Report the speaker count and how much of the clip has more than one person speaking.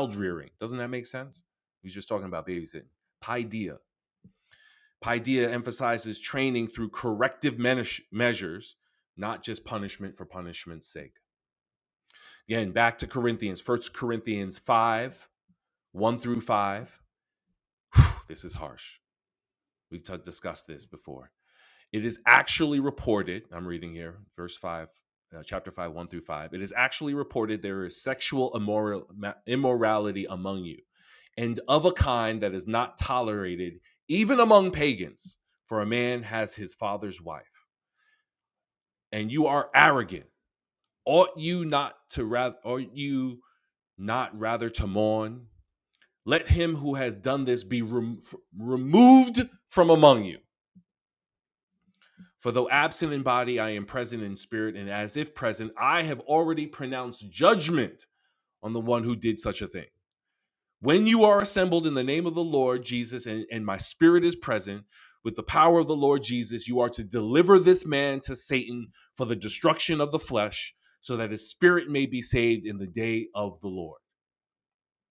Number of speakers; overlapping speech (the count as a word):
one, no overlap